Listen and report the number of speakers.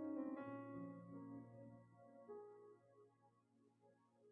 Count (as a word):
zero